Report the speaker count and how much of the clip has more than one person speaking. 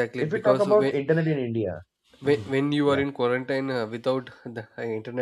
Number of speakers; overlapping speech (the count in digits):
2, about 23%